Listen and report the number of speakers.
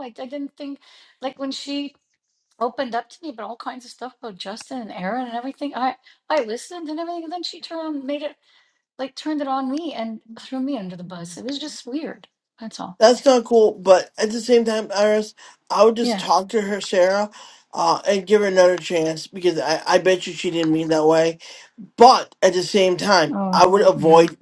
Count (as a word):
two